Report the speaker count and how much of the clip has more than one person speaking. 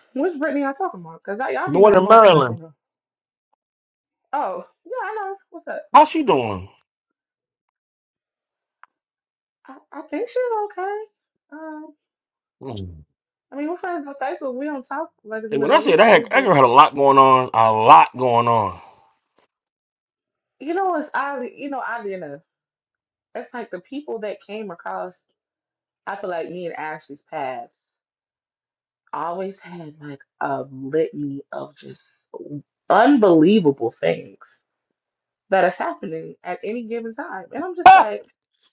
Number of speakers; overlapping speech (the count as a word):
two, about 5%